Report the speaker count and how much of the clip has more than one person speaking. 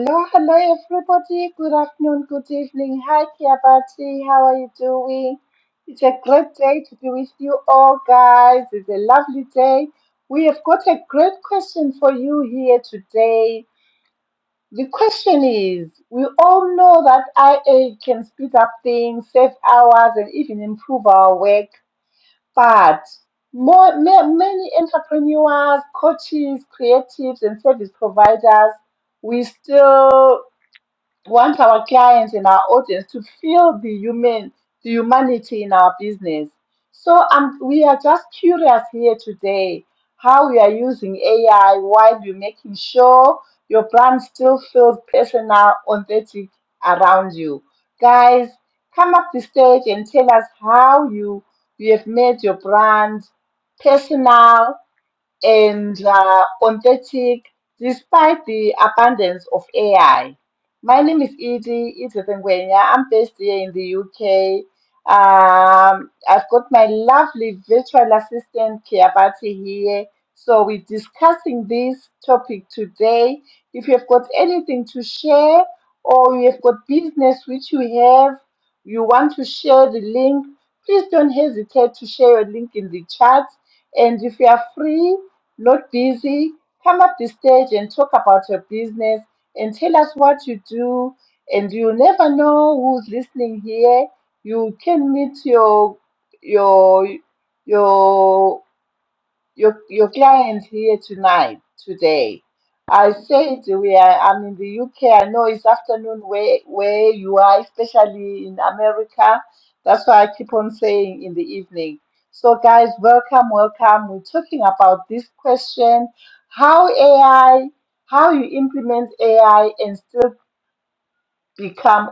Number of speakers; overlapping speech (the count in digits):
1, no overlap